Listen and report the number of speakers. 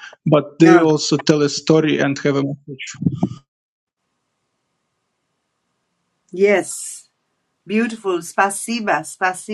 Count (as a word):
two